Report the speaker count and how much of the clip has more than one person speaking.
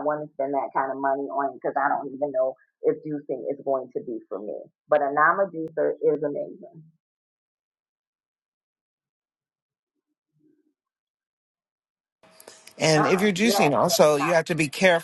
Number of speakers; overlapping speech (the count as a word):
two, about 7%